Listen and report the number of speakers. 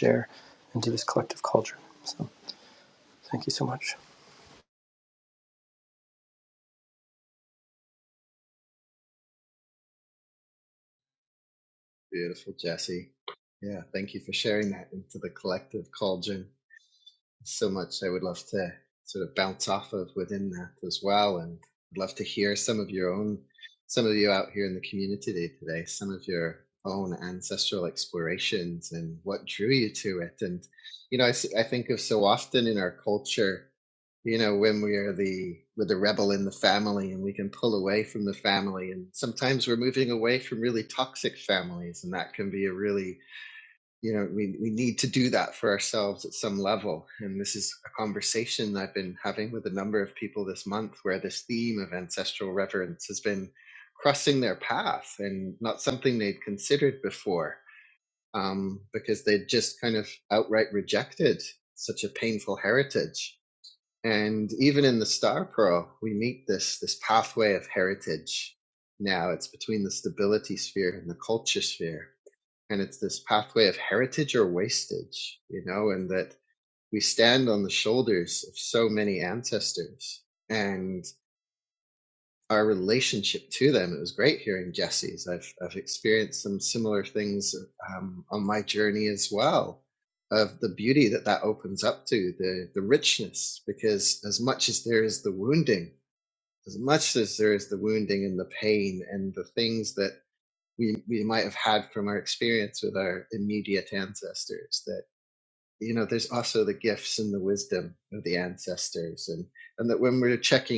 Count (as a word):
two